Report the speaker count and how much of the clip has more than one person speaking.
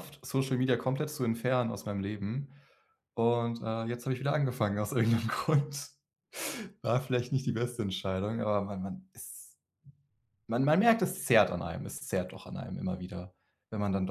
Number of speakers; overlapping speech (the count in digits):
1, no overlap